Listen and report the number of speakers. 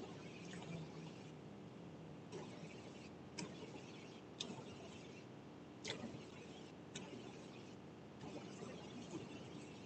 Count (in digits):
0